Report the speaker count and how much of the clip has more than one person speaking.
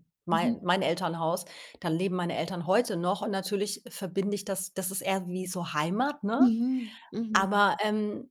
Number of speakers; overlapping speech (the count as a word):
two, about 7%